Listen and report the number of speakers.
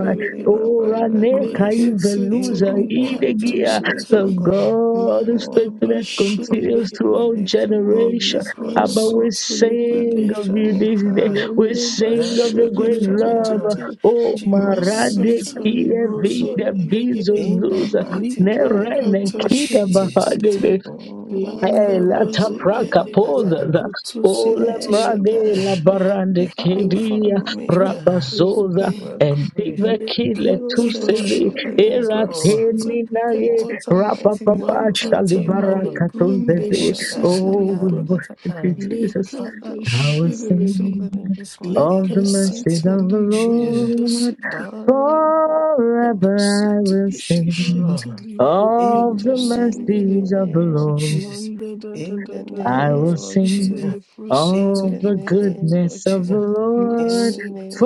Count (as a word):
three